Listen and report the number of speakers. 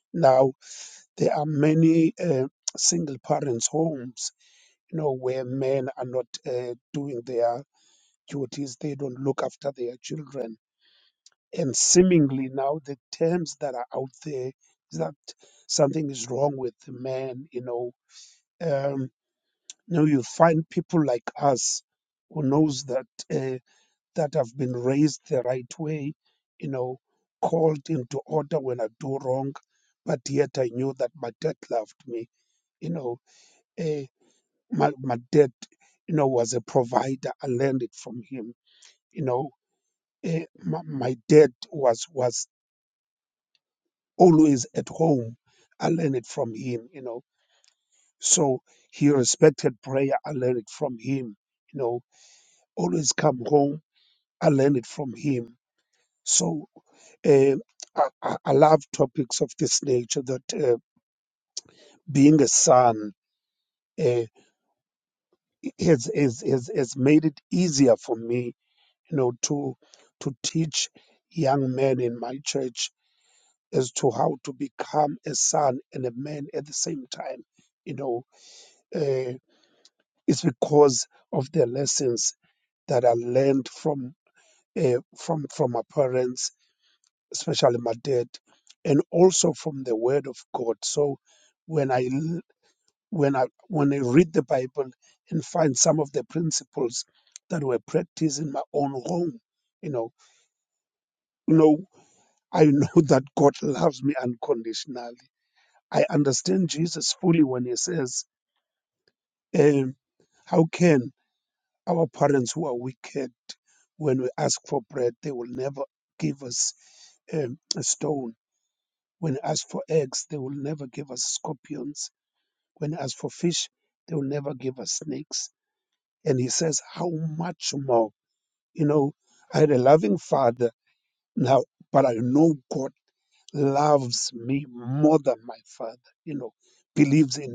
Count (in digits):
1